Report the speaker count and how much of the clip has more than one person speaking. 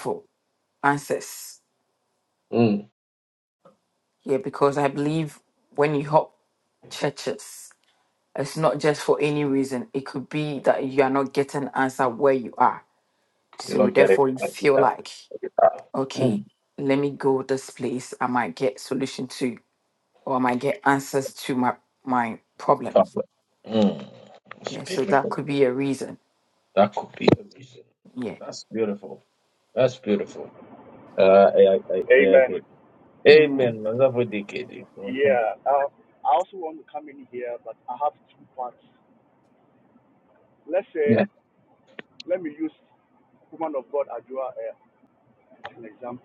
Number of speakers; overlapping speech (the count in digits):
3, about 7%